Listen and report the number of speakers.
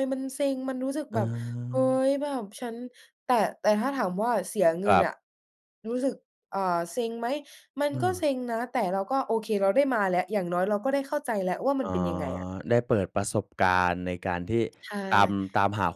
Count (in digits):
2